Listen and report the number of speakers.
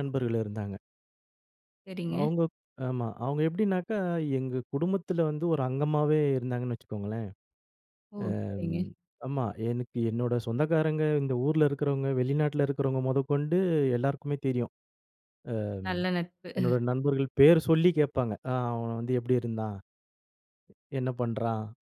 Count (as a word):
two